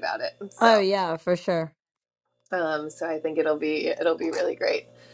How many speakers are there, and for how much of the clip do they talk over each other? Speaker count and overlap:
2, about 2%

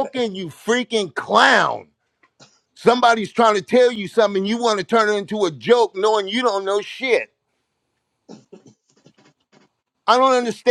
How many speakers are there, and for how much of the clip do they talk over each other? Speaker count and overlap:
1, no overlap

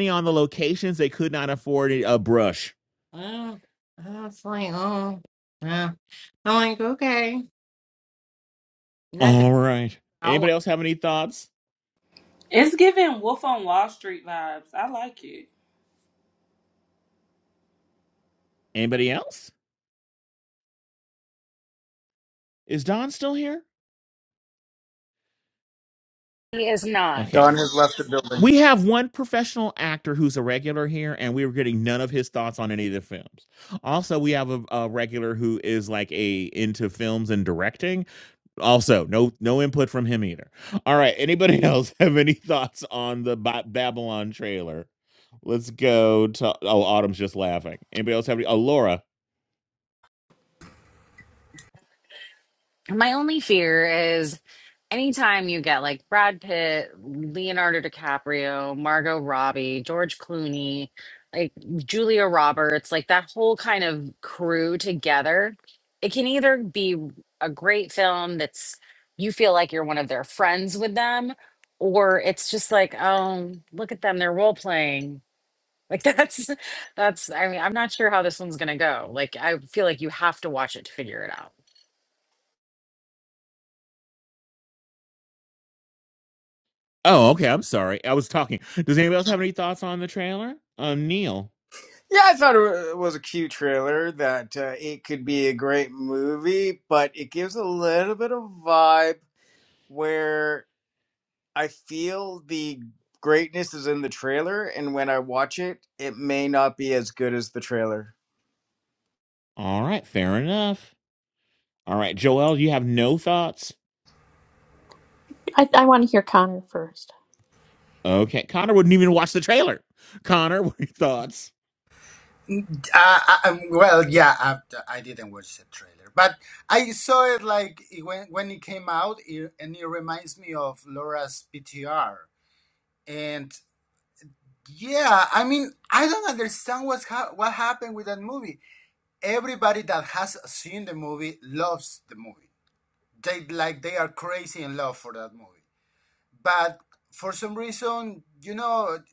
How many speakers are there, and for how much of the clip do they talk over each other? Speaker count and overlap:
7, about 1%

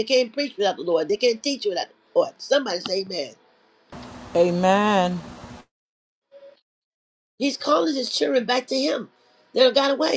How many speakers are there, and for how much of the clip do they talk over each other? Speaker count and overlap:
2, no overlap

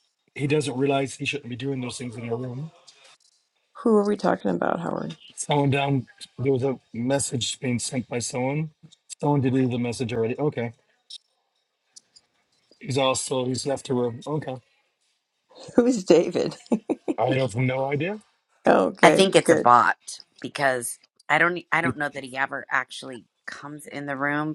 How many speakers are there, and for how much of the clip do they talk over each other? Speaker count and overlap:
3, about 3%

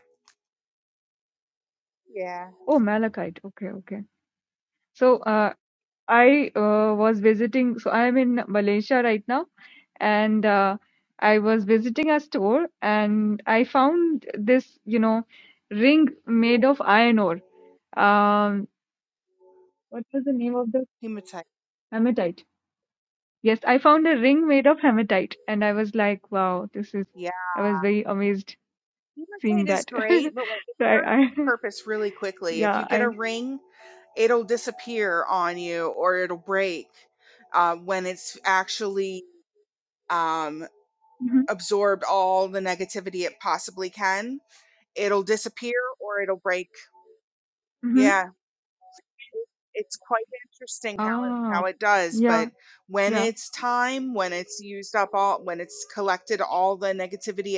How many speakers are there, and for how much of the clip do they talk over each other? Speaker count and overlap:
2, about 6%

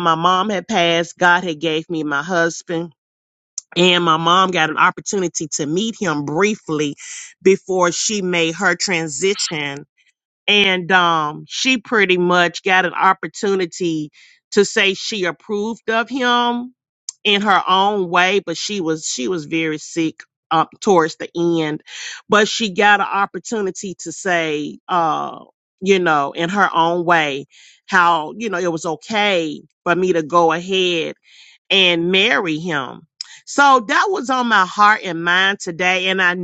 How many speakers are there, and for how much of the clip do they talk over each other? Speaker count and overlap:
1, no overlap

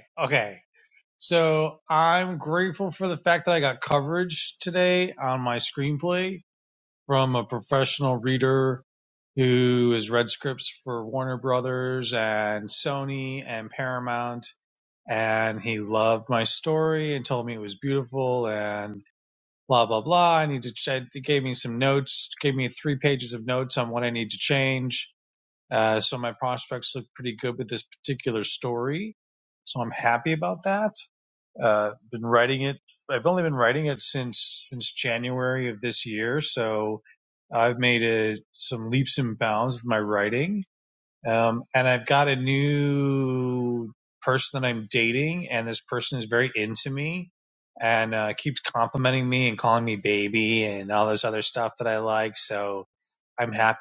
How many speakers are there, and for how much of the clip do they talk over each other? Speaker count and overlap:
1, no overlap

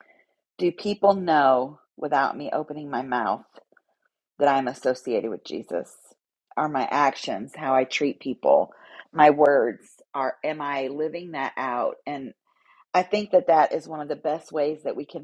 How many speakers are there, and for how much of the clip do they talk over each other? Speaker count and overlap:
1, no overlap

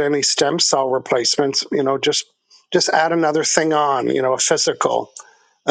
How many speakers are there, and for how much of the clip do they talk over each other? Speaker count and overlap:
1, no overlap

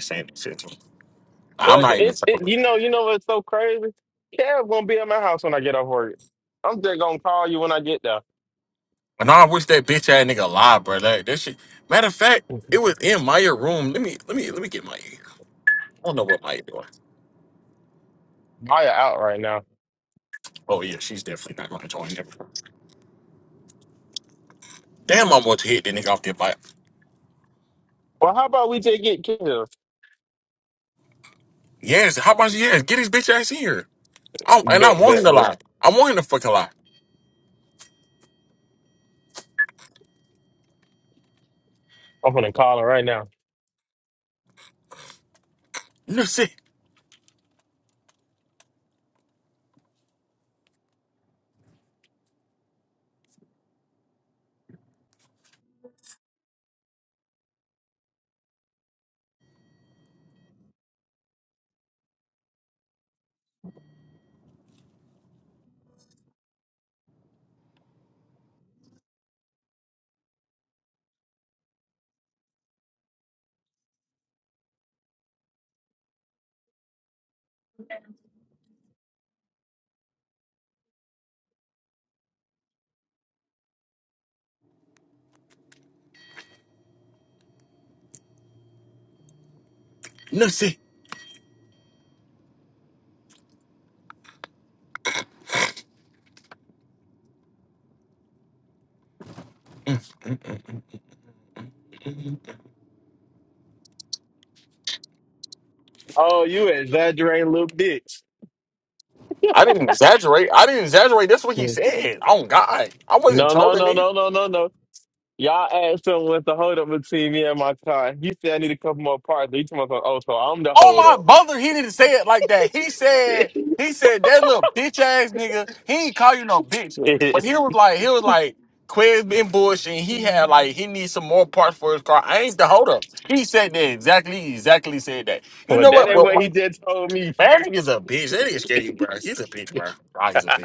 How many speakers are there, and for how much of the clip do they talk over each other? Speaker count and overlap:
2, about 3%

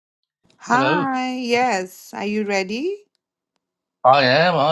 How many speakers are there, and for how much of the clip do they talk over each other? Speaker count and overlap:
2, about 8%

